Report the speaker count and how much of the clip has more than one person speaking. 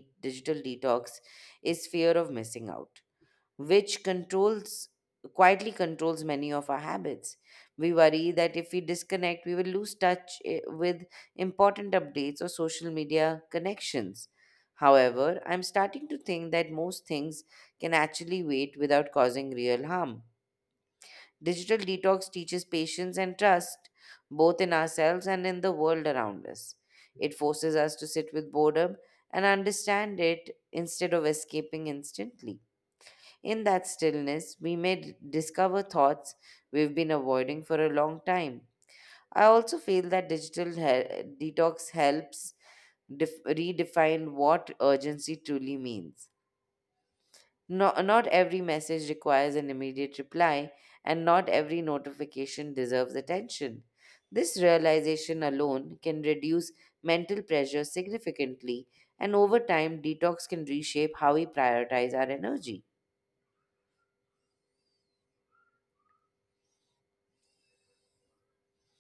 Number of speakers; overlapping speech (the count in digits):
1, no overlap